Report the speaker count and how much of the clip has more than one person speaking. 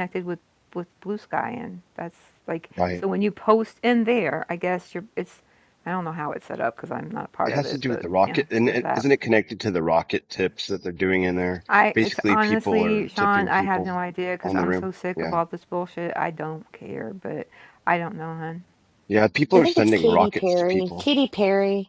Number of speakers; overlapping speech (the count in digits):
3, about 26%